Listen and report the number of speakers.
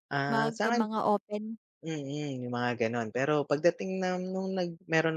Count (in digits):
2